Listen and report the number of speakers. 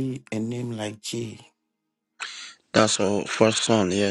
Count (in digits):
2